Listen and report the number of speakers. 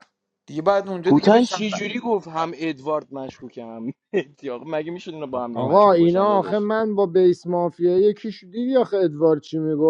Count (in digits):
3